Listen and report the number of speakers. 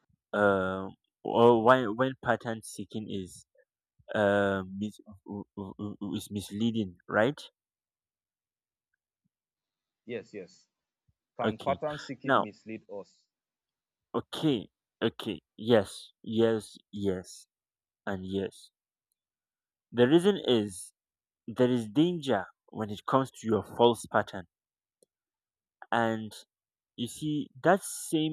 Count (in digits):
2